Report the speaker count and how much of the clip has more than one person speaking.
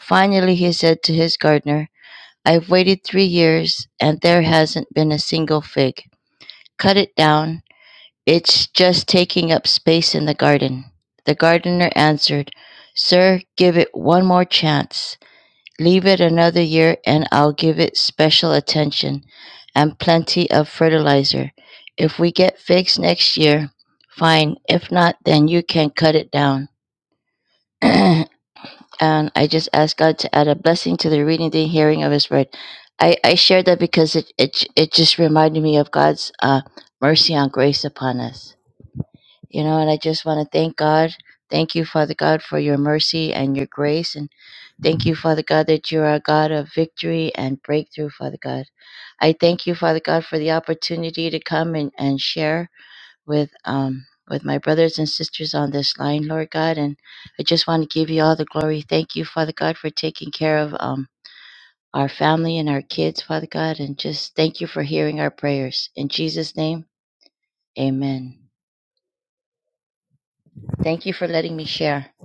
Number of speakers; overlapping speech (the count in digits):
1, no overlap